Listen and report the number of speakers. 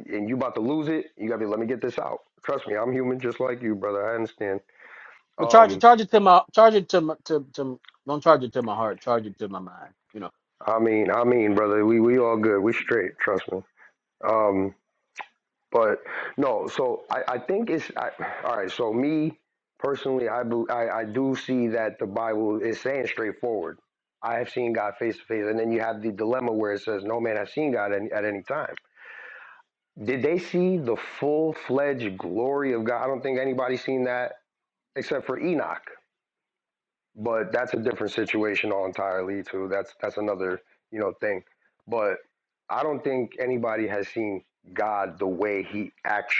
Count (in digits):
2